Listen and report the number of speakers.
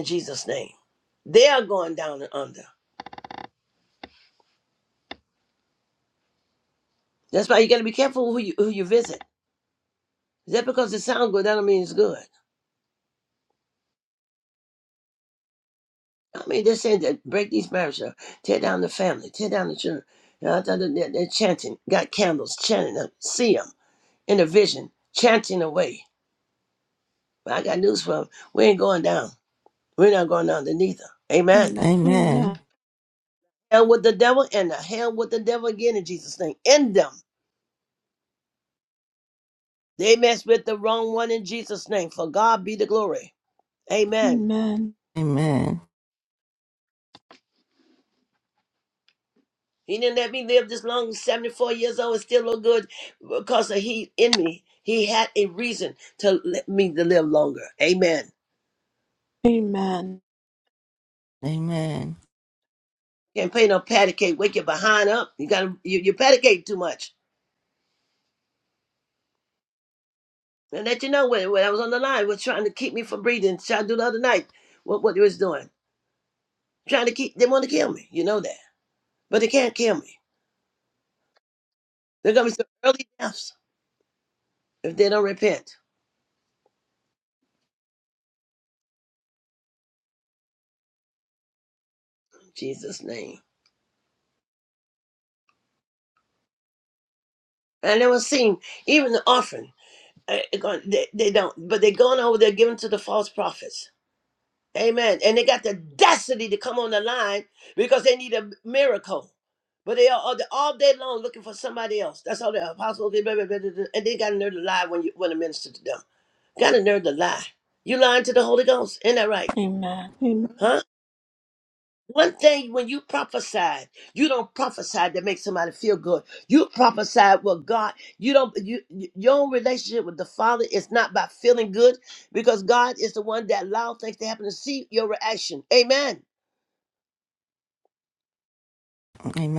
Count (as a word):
three